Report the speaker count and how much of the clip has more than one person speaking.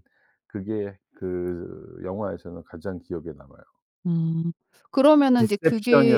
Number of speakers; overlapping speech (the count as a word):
two, about 13%